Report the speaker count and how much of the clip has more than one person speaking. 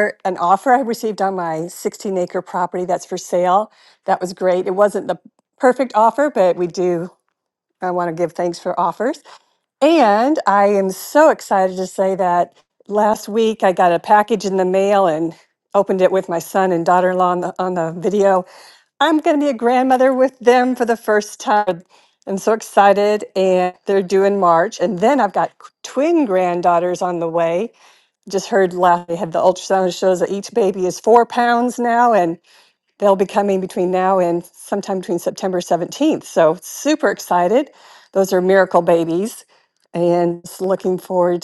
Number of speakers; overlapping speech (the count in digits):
1, no overlap